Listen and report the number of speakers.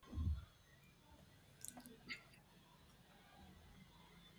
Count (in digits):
0